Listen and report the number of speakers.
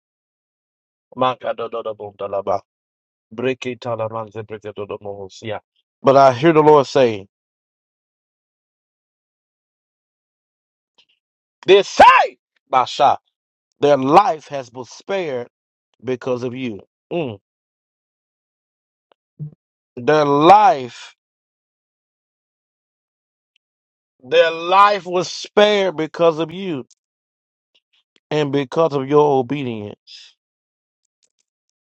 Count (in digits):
1